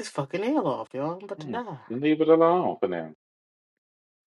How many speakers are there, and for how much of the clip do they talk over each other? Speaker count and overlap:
2, about 9%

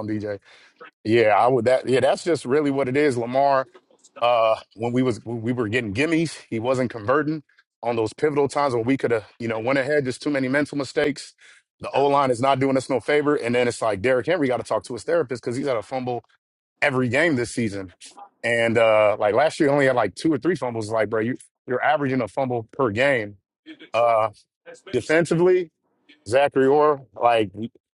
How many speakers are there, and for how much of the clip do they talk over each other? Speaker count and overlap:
1, no overlap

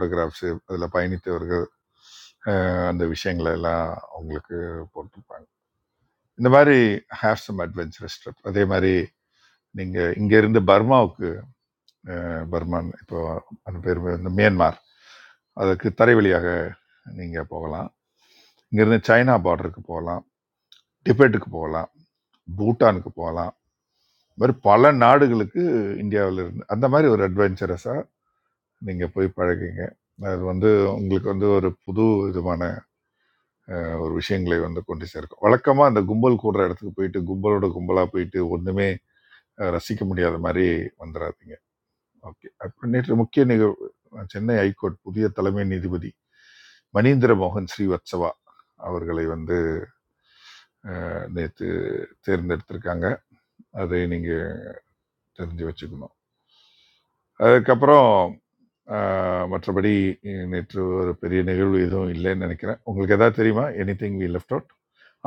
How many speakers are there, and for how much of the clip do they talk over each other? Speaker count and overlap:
1, no overlap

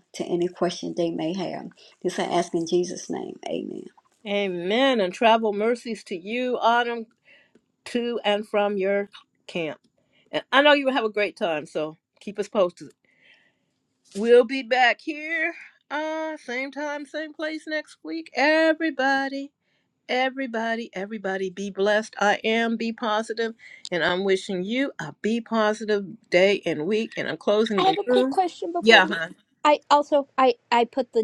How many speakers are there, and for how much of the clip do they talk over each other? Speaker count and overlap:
3, about 3%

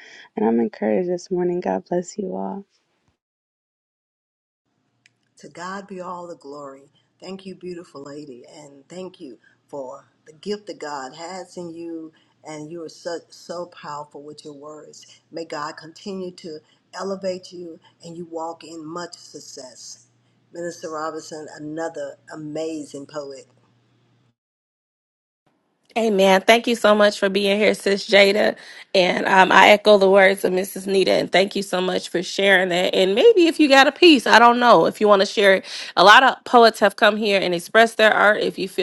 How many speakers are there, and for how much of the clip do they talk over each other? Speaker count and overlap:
3, no overlap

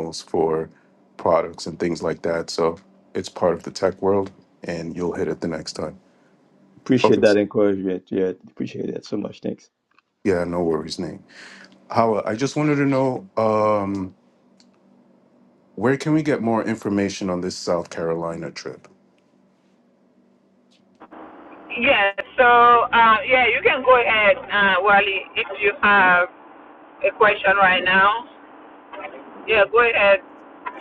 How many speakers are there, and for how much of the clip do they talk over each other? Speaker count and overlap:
3, about 1%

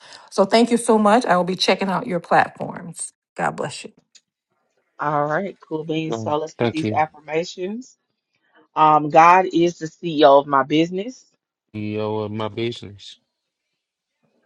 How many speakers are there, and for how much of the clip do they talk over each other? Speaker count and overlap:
3, about 7%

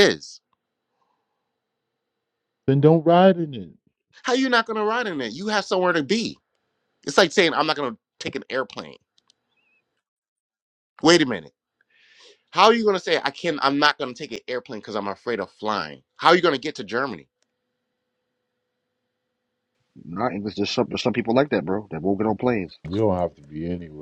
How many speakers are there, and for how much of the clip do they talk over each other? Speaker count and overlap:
3, no overlap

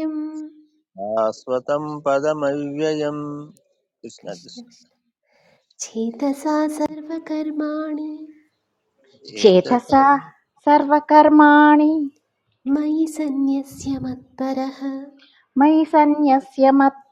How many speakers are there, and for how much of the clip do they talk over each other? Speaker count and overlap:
3, about 3%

